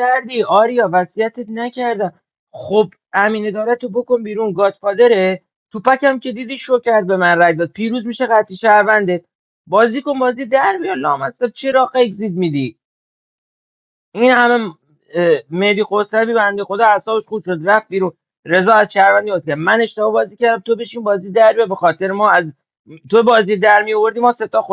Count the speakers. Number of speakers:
one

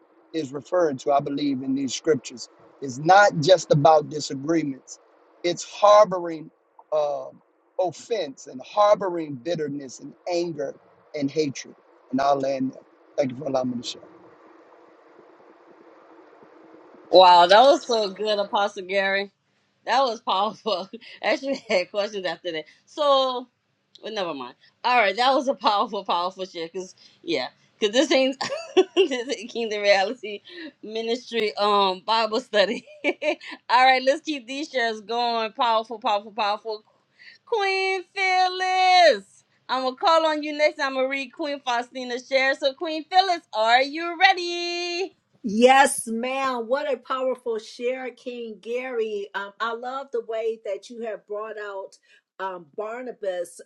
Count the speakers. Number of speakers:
three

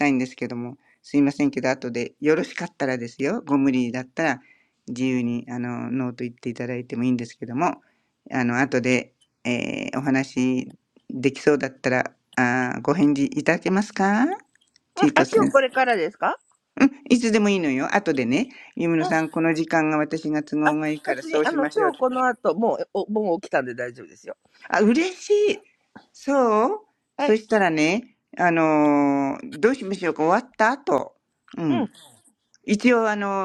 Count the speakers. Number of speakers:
two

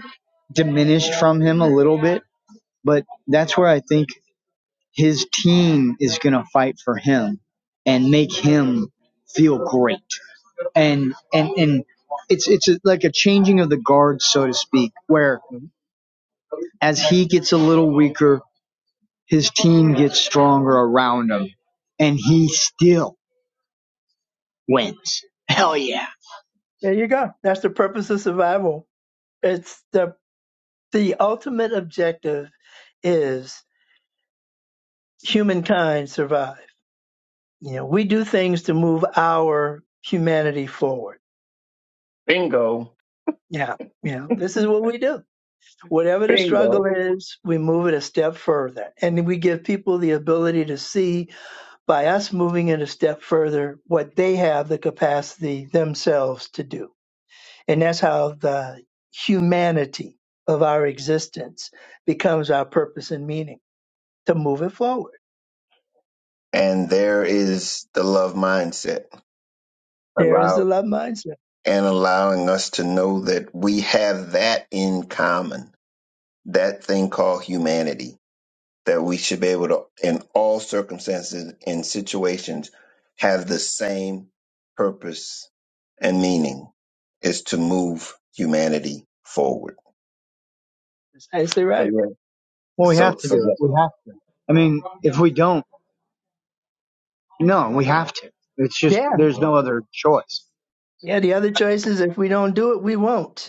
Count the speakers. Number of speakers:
three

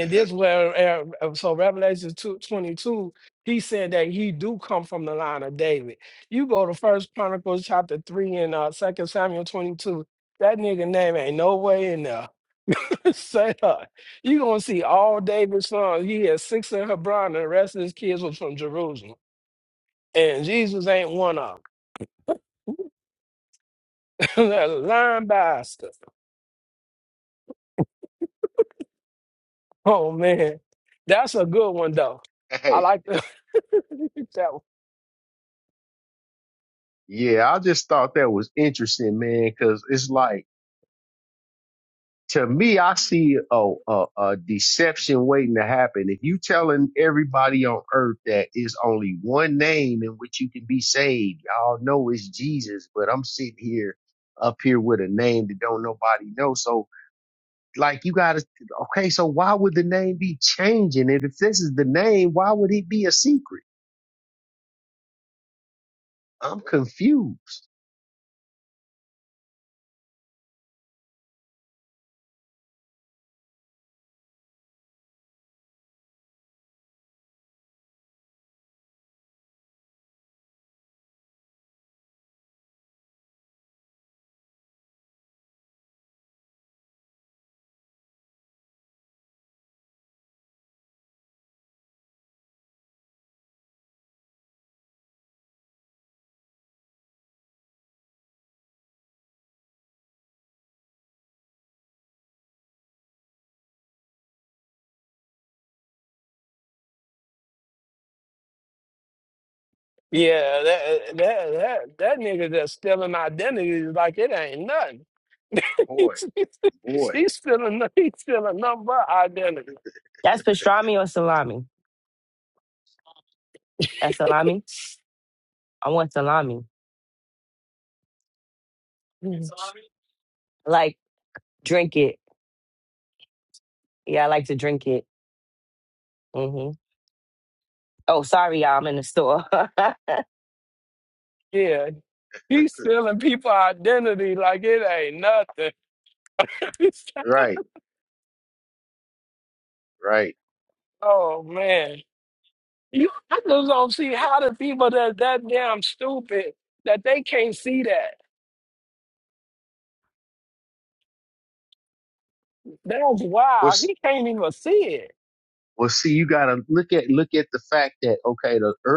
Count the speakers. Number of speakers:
three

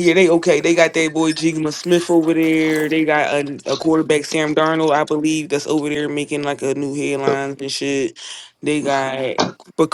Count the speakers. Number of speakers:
one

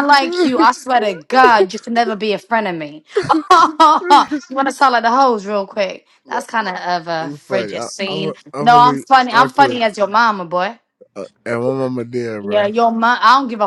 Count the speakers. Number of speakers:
two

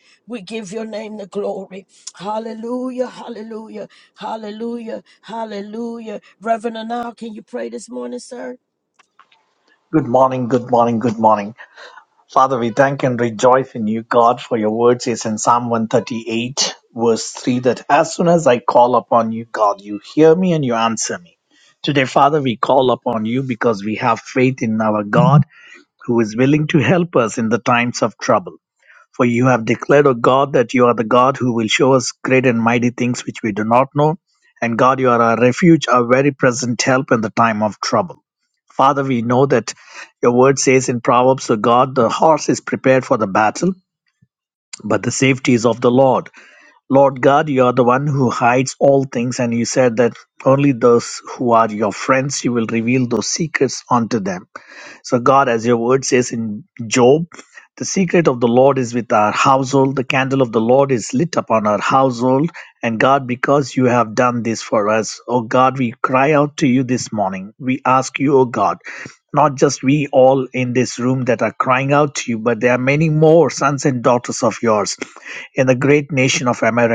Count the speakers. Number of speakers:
two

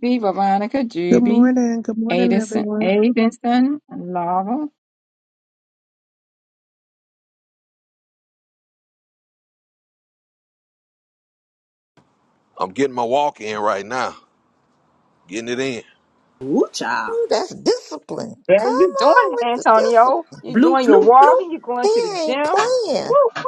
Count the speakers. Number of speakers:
five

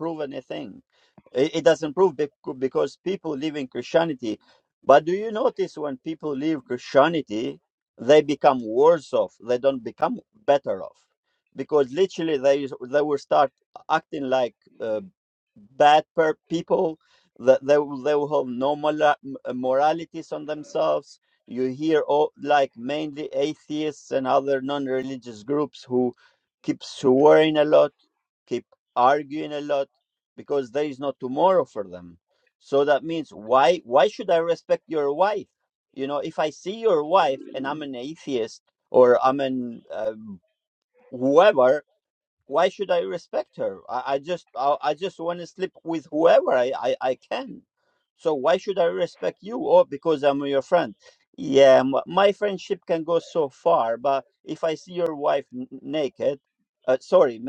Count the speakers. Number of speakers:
one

